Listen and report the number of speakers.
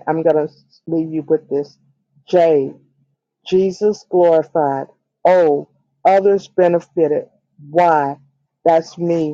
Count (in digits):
1